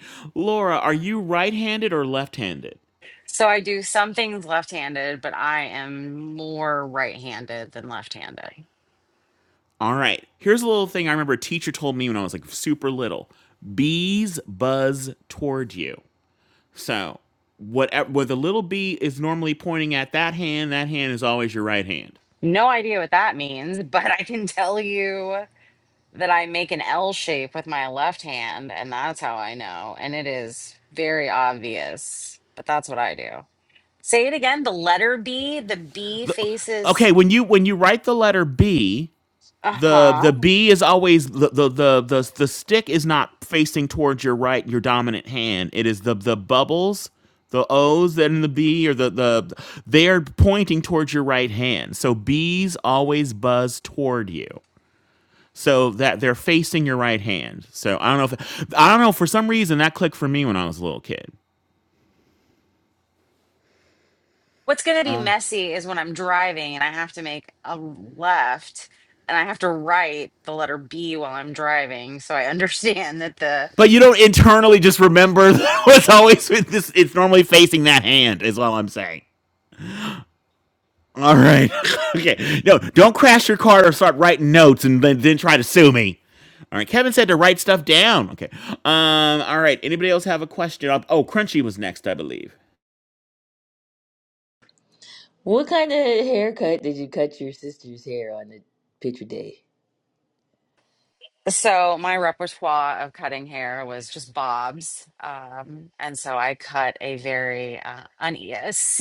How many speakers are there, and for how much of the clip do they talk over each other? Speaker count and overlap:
3, about 1%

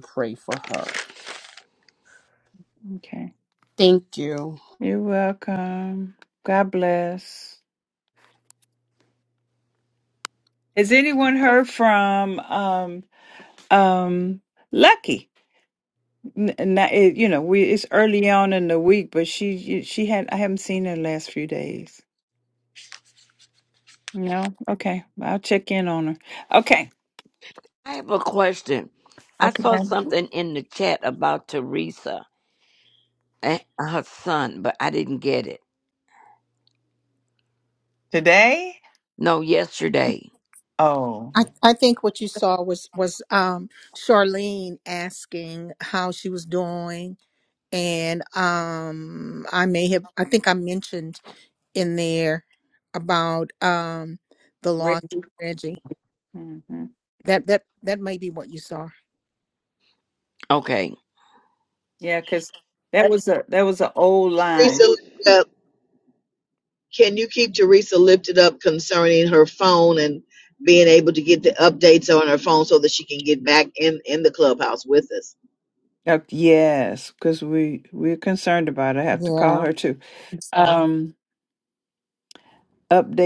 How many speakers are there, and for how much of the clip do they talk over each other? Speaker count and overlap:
5, about 2%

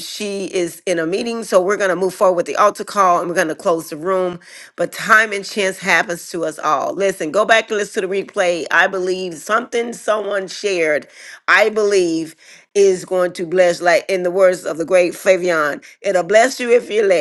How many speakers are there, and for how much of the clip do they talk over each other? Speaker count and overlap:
1, no overlap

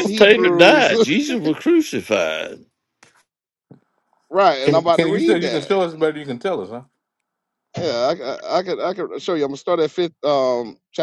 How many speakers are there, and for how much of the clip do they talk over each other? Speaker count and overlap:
3, about 18%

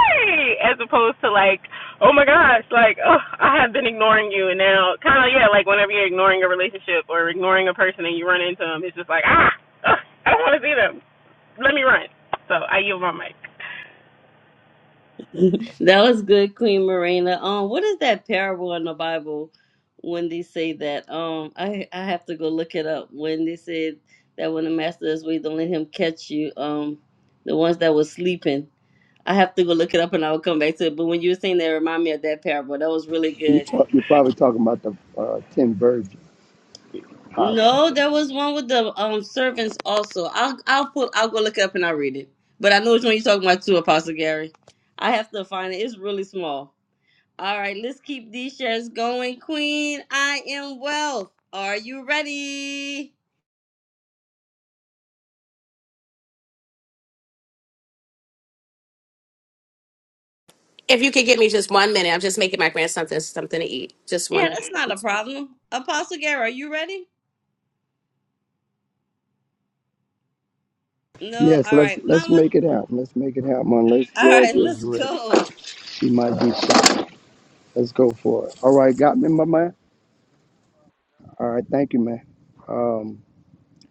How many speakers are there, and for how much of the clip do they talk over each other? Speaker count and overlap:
4, about 4%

